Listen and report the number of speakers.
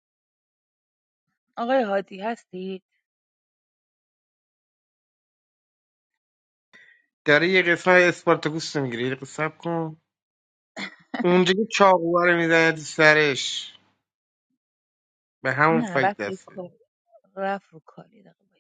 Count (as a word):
two